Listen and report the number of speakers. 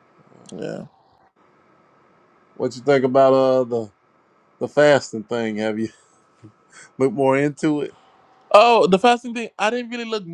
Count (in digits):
2